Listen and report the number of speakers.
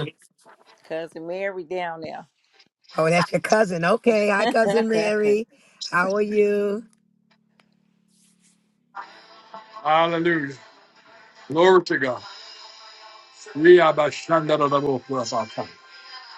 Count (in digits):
3